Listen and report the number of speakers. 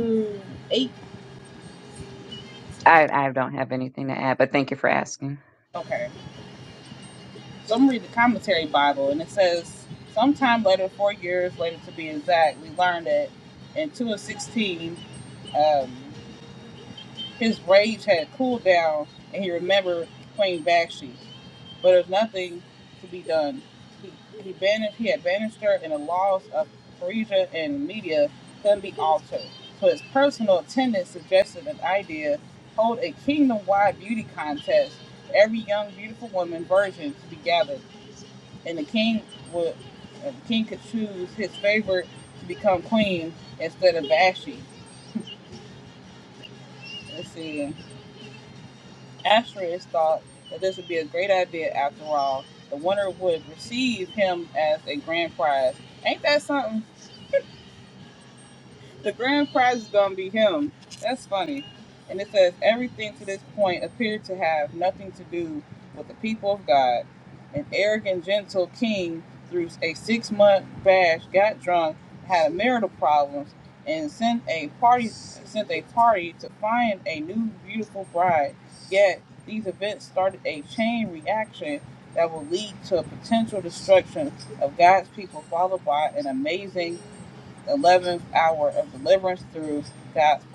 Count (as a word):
two